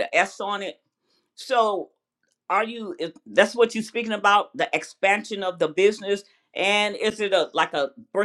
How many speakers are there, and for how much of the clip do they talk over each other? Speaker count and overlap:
1, no overlap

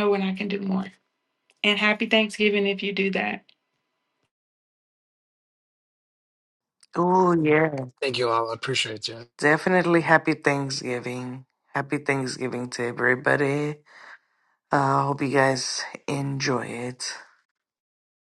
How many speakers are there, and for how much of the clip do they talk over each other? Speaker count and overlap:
3, no overlap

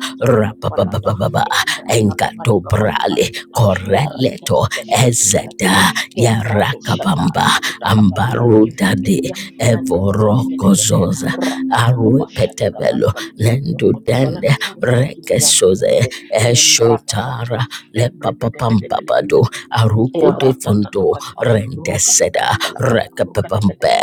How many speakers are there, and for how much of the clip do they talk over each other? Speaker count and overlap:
2, about 66%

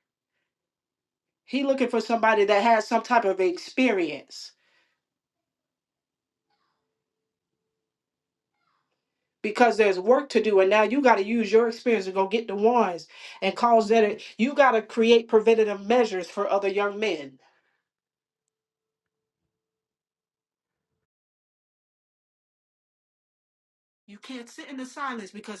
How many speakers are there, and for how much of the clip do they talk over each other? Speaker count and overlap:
1, no overlap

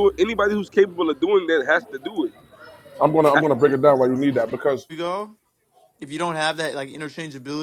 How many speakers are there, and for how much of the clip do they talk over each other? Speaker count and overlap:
3, no overlap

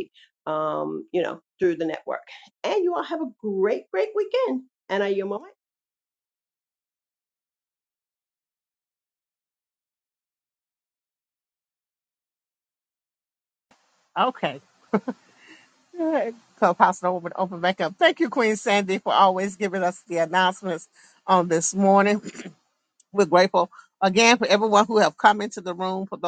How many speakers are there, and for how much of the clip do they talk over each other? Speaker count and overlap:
2, no overlap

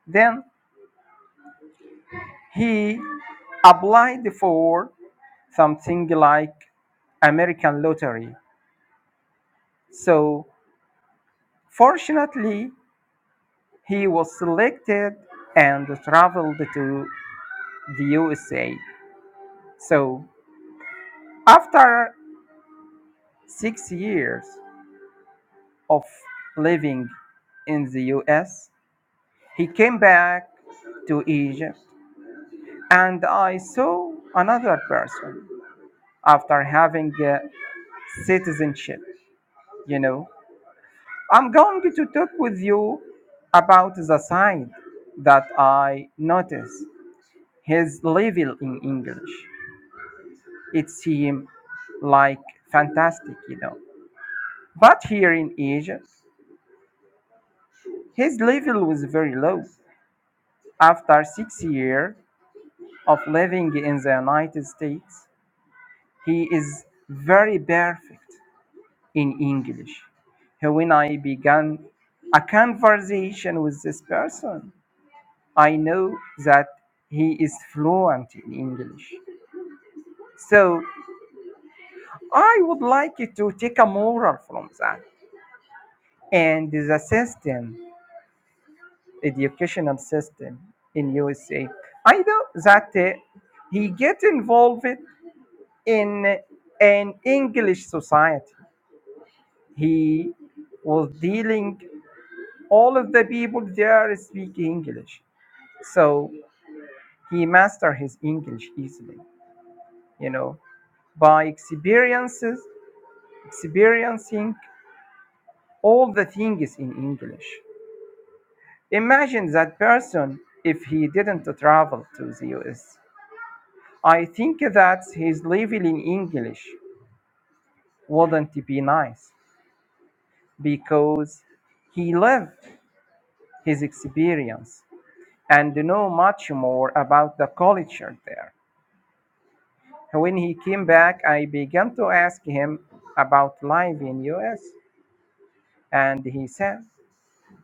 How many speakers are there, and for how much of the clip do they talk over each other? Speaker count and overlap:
1, no overlap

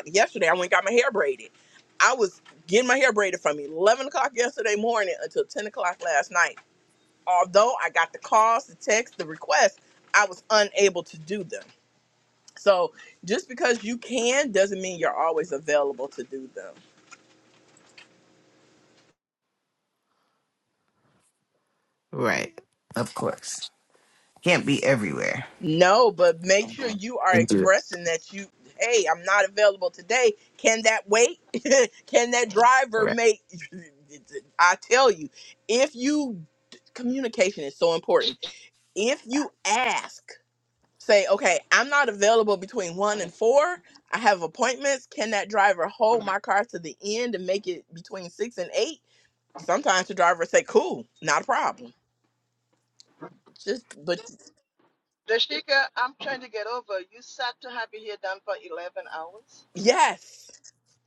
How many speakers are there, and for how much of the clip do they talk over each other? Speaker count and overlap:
3, about 1%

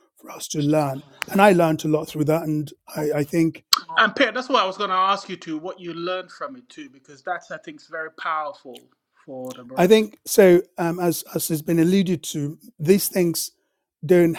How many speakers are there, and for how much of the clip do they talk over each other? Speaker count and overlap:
2, about 1%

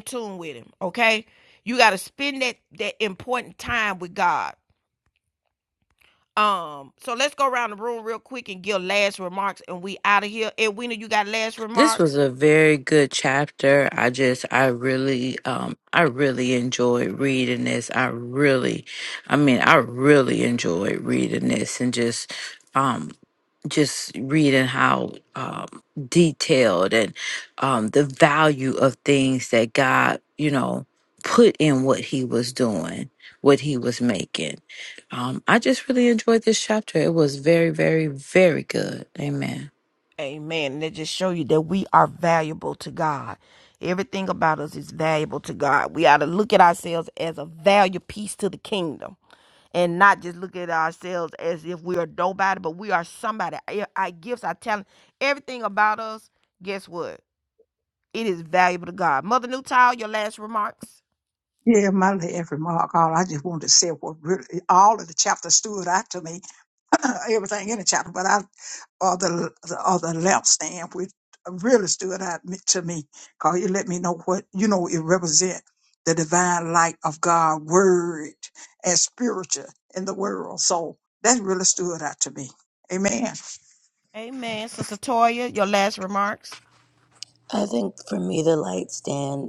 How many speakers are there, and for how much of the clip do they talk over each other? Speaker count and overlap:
4, under 1%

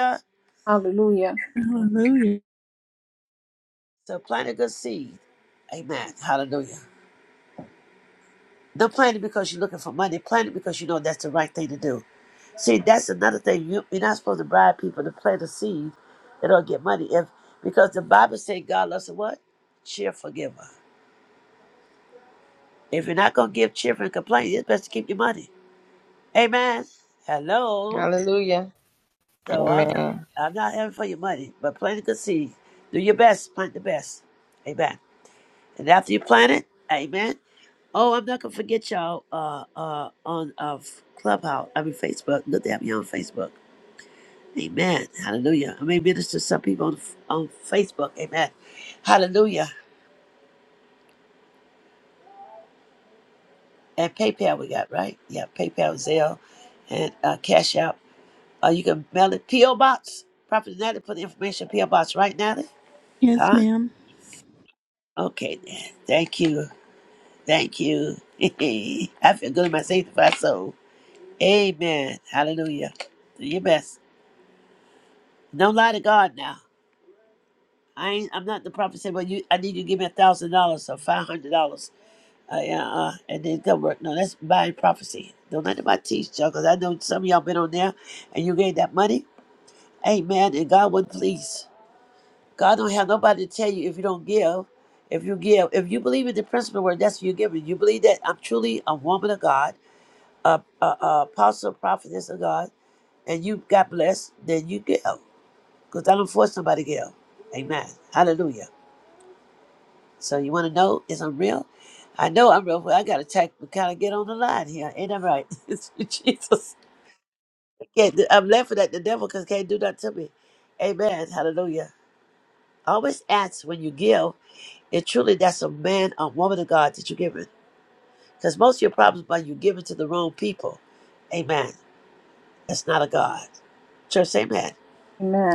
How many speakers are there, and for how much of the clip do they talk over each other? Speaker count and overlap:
4, about 1%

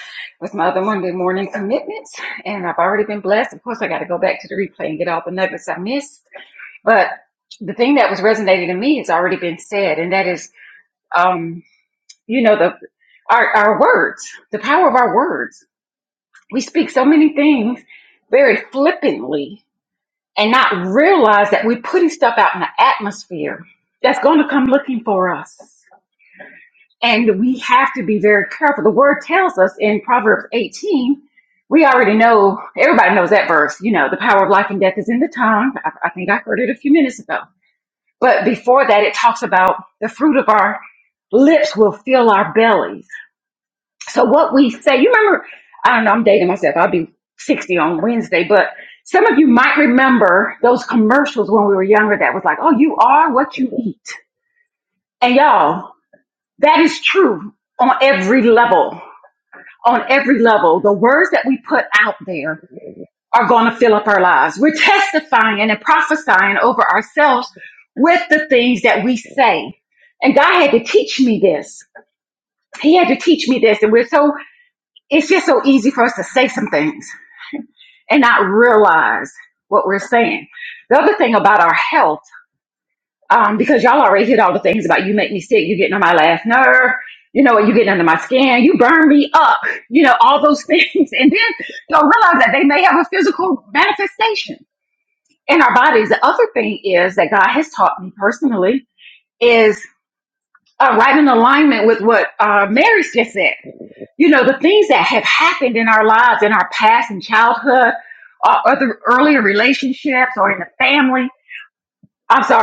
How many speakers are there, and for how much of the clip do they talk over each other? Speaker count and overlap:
1, no overlap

